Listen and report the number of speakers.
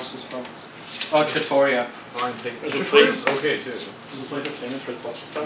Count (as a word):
three